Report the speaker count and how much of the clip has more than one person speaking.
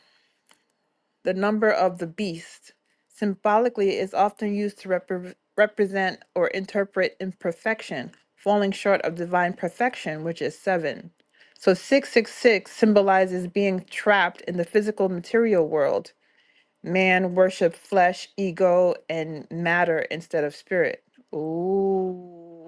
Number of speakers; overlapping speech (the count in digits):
1, no overlap